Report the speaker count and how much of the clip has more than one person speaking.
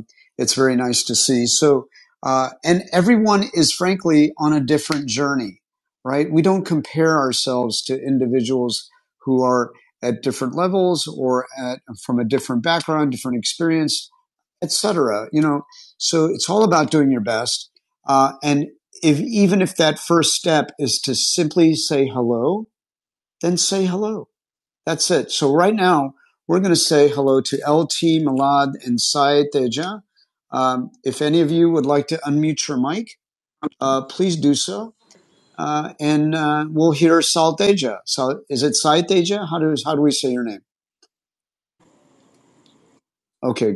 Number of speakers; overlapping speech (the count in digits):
1, no overlap